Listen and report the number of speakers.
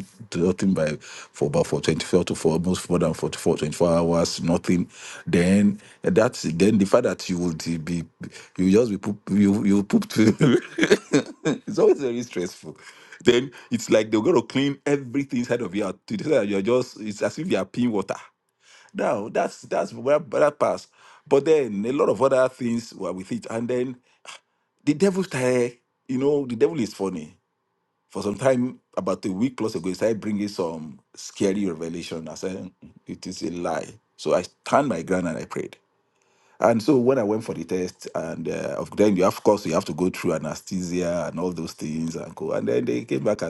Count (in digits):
1